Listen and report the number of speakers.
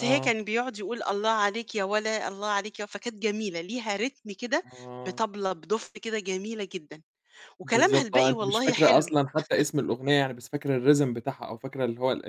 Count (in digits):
2